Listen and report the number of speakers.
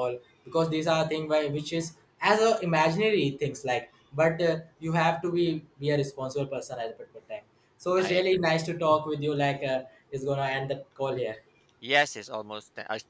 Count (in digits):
2